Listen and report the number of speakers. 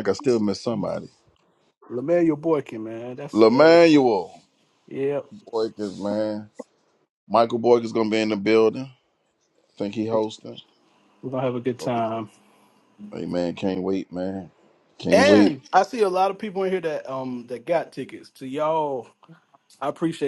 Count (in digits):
2